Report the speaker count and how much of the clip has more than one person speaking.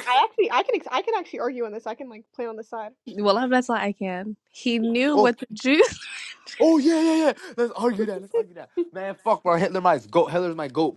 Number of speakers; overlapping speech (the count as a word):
three, about 2%